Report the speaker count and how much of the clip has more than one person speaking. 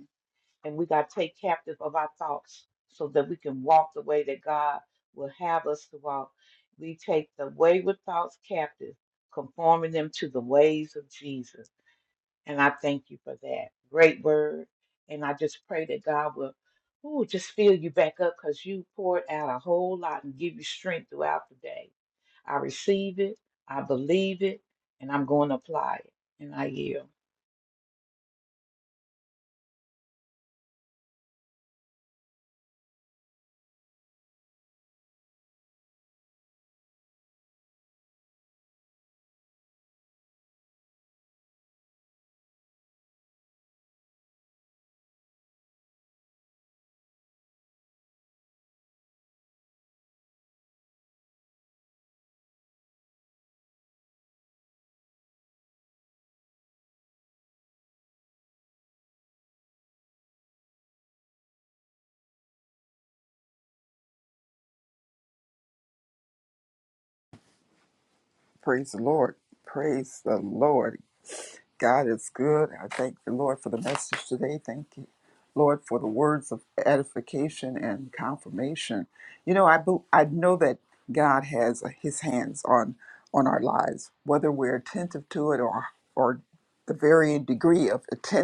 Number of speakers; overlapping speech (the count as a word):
two, no overlap